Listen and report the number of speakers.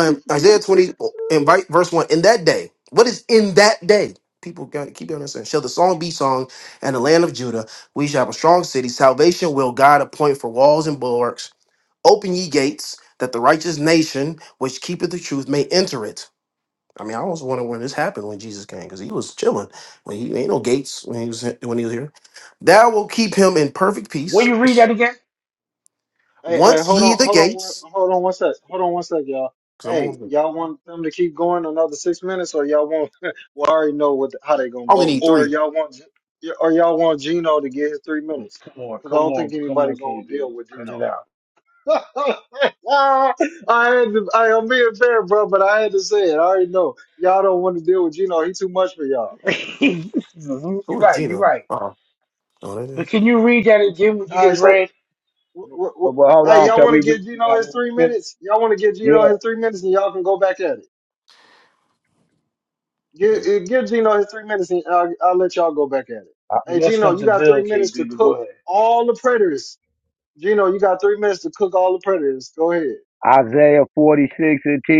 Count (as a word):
four